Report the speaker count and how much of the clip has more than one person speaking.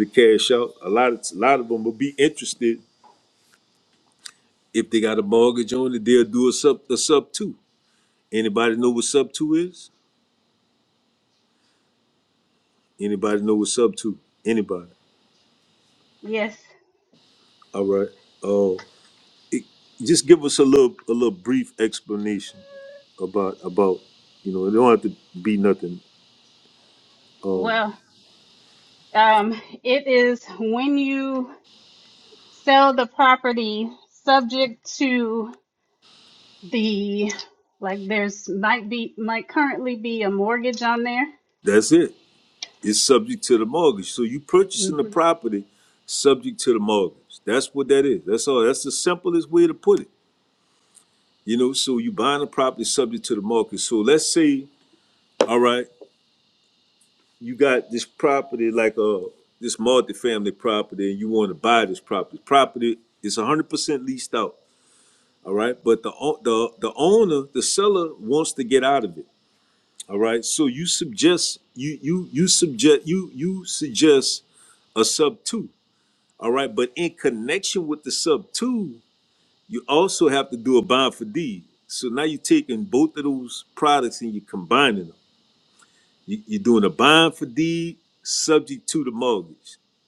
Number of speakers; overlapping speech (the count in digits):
2, about 1%